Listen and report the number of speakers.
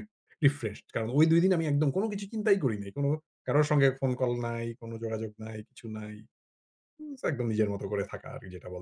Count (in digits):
1